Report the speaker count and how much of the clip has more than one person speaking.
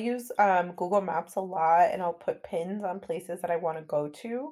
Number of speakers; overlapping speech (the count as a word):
one, no overlap